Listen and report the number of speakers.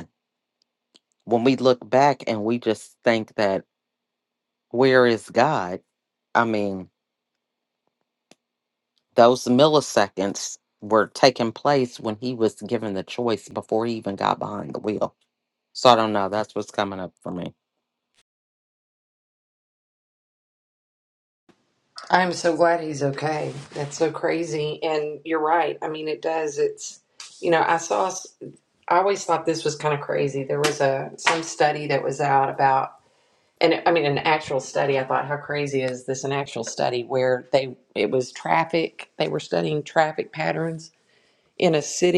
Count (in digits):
2